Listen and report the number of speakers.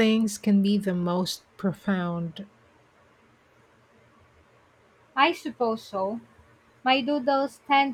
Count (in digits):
2